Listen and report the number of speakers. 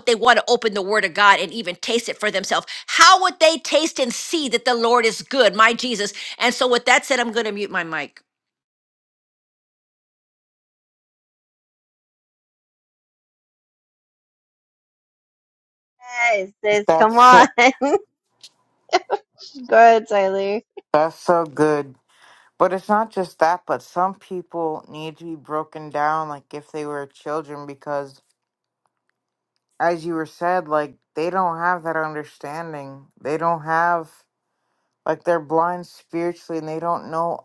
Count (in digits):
3